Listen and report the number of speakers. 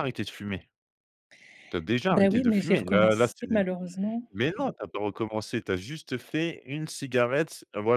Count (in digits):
2